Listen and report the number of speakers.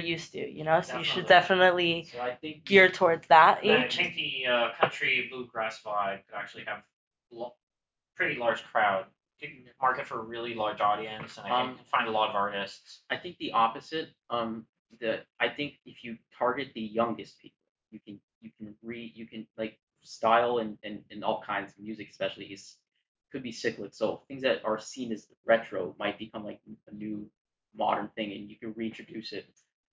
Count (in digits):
3